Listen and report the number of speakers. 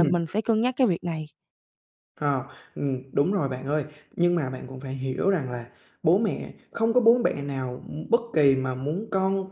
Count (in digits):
2